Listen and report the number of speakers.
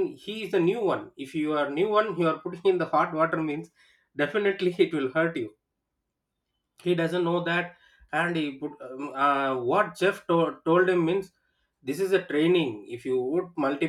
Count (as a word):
one